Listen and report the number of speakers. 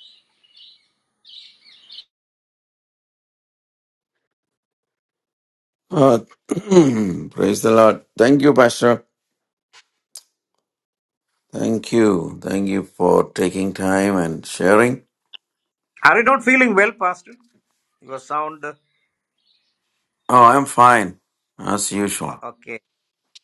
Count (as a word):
two